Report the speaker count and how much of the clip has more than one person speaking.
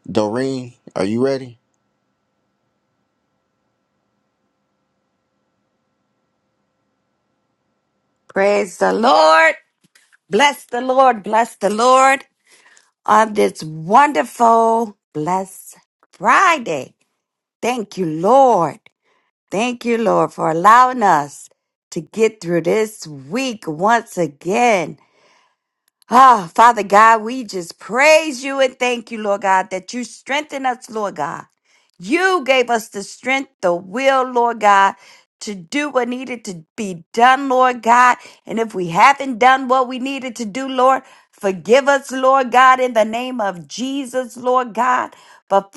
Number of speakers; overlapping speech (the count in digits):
2, no overlap